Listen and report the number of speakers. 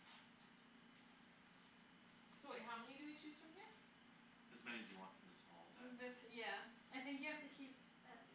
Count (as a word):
three